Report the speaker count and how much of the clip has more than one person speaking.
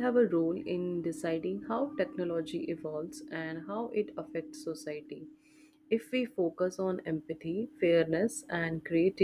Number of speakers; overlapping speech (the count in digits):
1, no overlap